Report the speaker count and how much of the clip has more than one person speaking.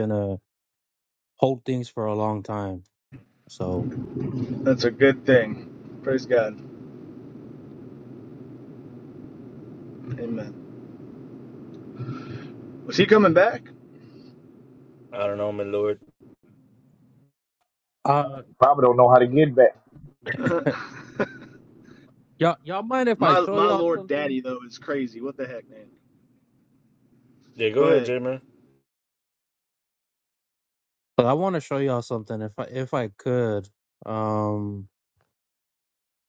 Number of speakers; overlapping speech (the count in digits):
4, about 3%